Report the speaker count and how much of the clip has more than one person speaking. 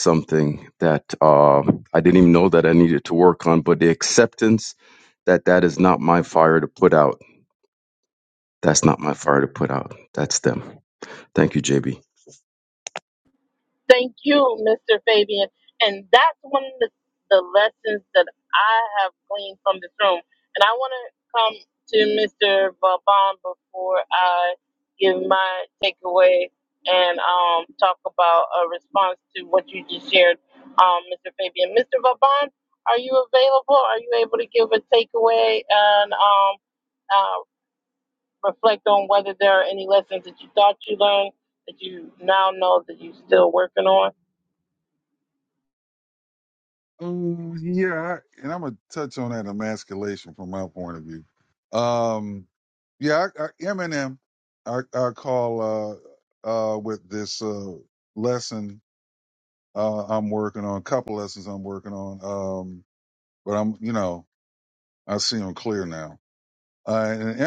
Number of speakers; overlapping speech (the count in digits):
3, no overlap